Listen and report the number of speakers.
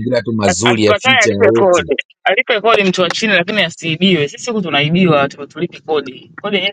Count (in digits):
2